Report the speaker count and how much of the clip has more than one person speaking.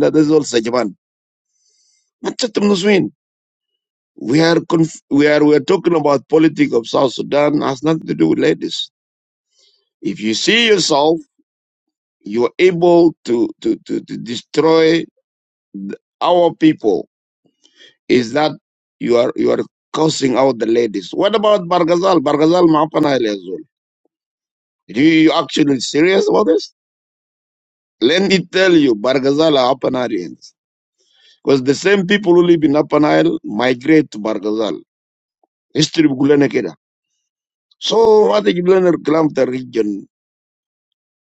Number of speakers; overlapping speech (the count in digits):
1, no overlap